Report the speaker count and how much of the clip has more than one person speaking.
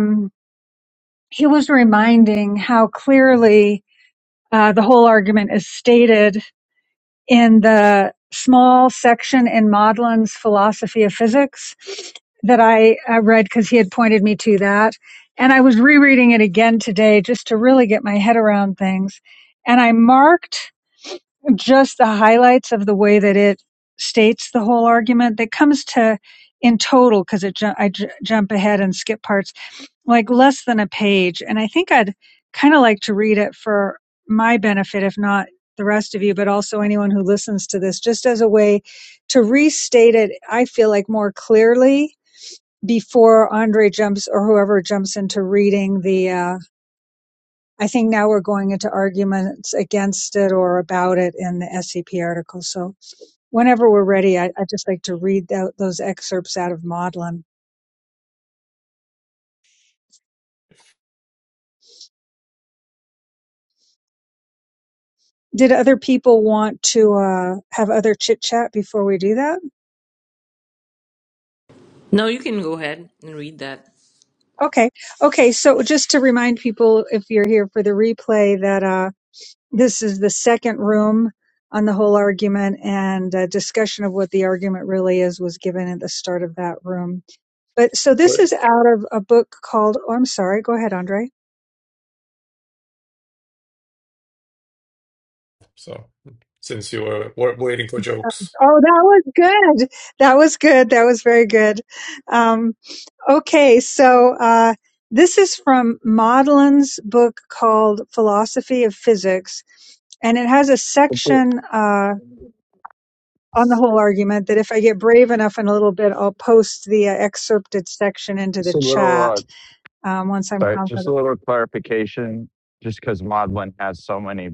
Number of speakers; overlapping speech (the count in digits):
4, about 2%